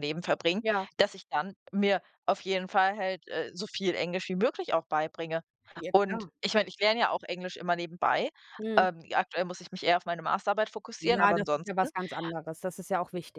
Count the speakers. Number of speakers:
2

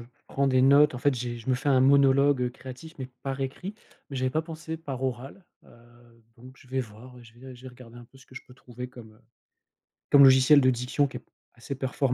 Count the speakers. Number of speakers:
1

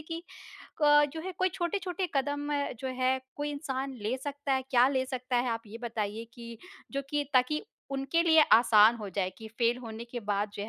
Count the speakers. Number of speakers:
1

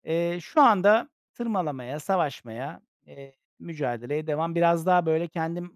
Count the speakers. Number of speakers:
1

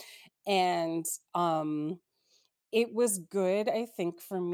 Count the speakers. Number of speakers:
1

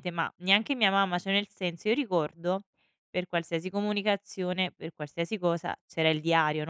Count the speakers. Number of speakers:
1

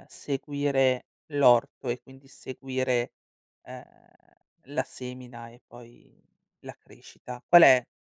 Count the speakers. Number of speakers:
1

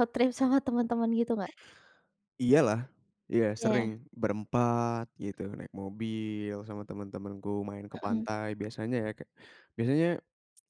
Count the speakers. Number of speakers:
2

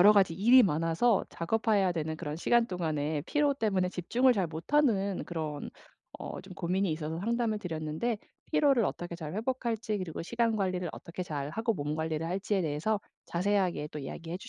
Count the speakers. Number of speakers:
1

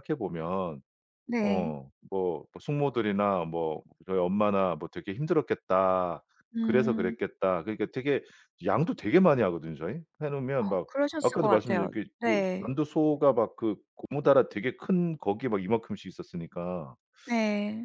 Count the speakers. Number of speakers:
2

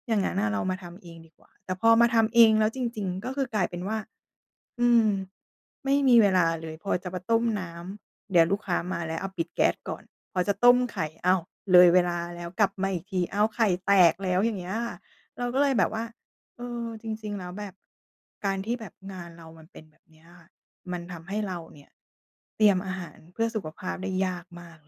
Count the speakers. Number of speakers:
1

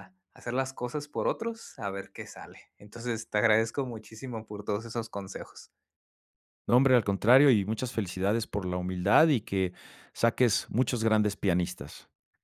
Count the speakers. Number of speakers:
2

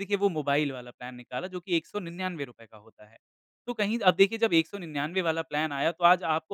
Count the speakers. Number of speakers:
1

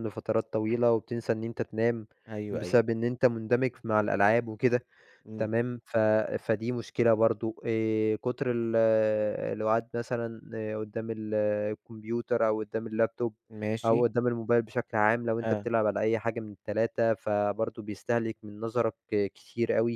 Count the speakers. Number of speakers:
2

